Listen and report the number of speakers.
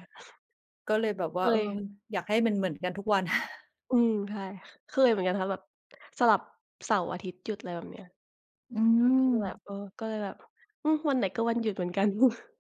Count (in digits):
2